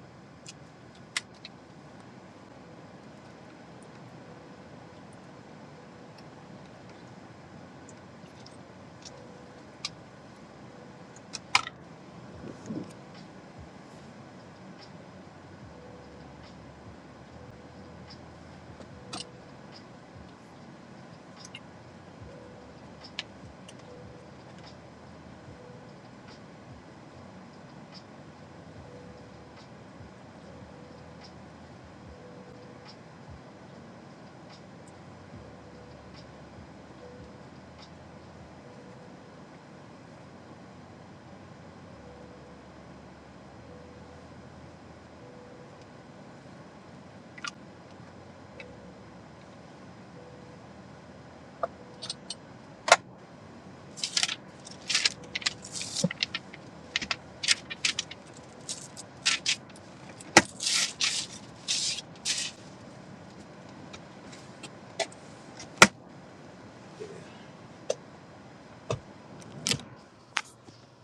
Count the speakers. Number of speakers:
0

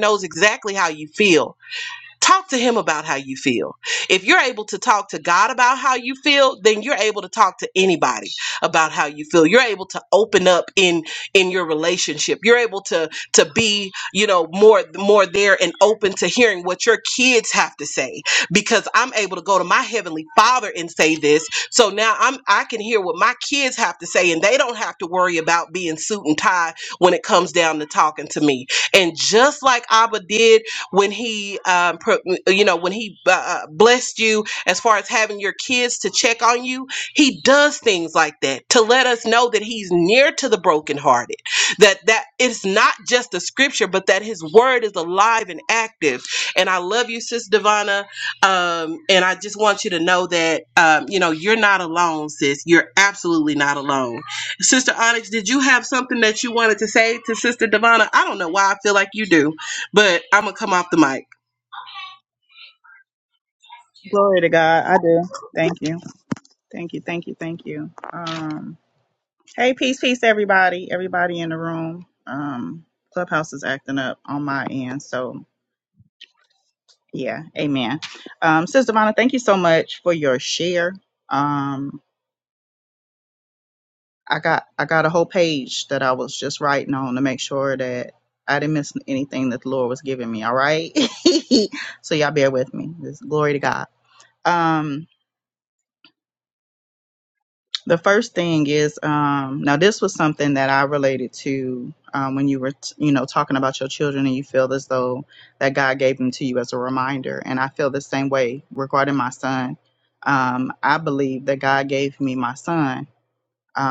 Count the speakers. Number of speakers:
2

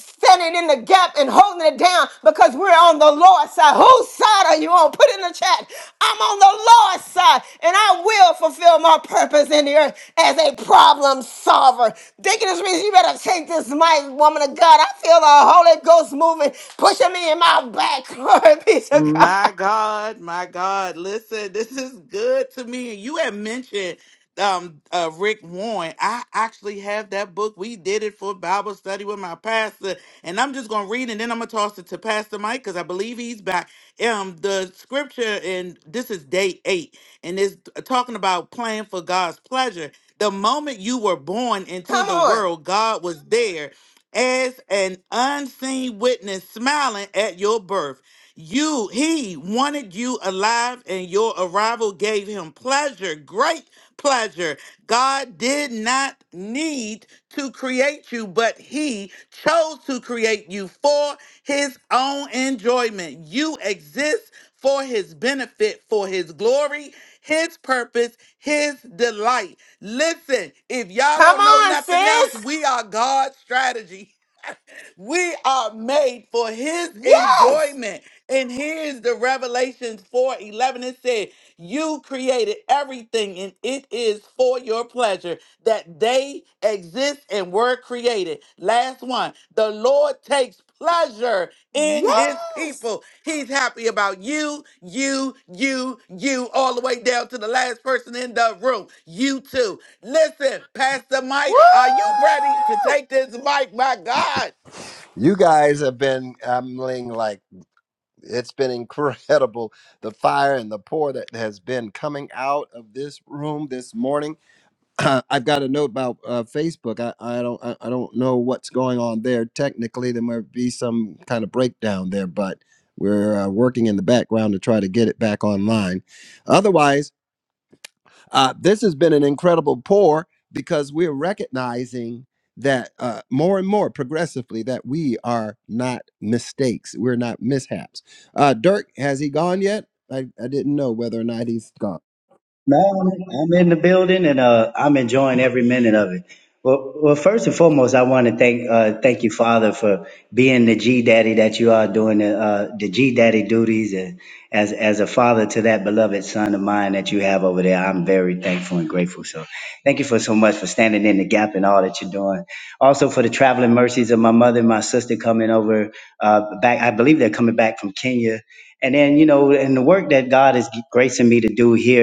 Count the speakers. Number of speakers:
4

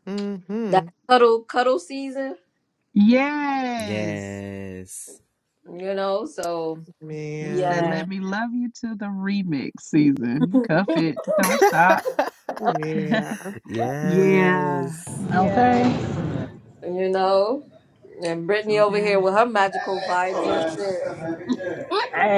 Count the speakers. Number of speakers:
5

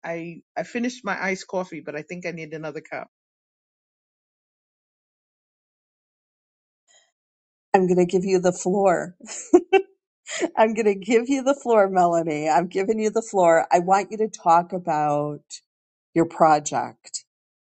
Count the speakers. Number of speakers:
2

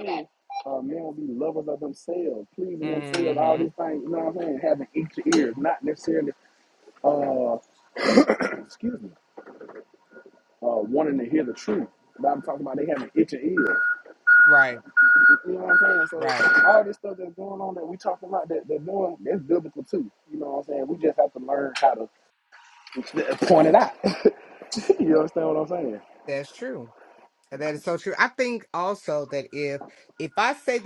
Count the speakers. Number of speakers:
2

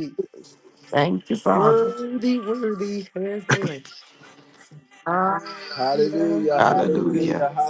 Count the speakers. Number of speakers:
3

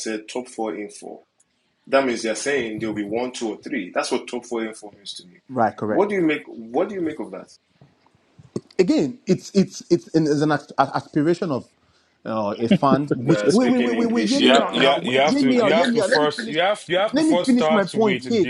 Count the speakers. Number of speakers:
3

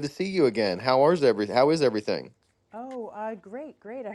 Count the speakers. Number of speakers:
2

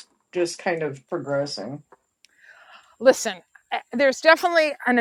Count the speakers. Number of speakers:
2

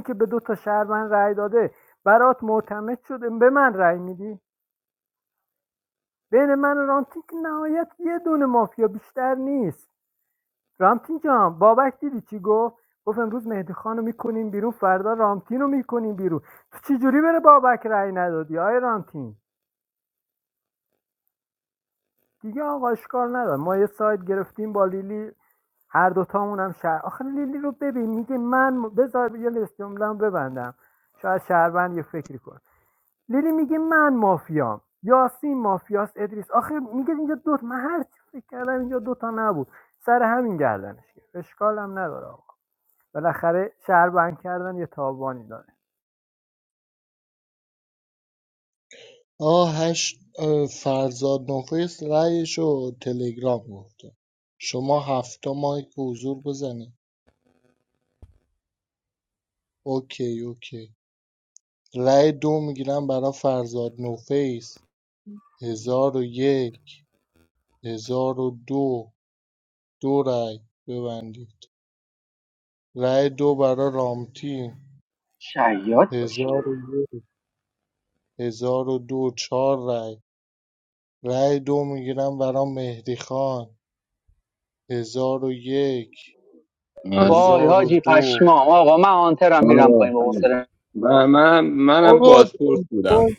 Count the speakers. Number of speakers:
4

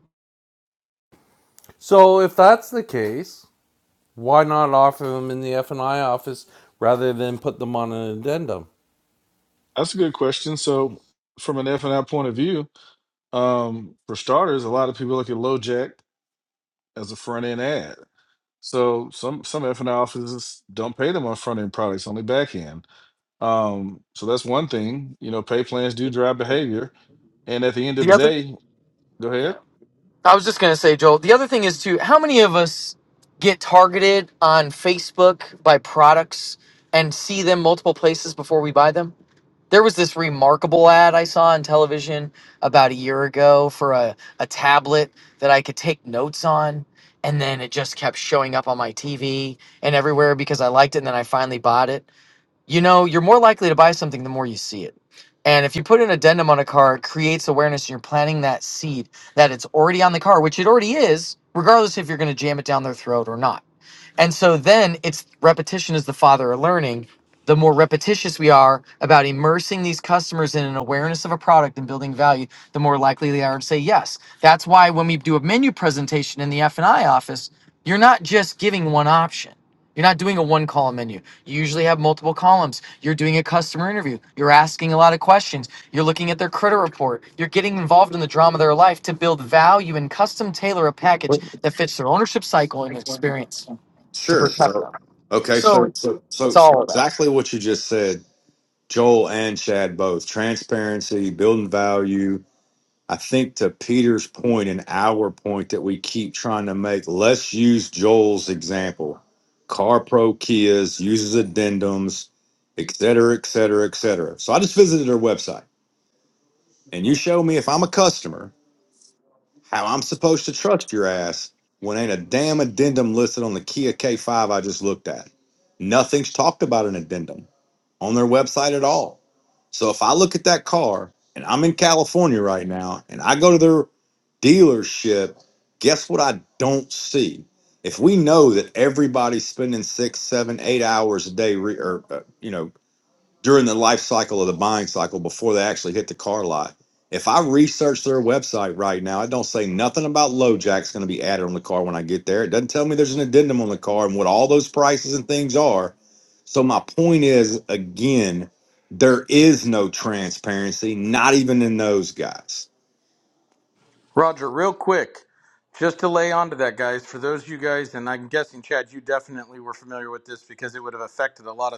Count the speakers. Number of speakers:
5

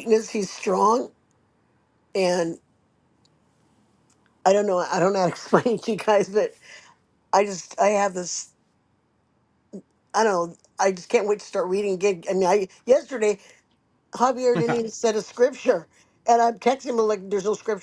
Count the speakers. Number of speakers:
1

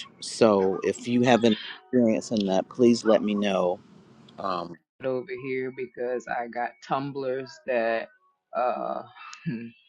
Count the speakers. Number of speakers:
2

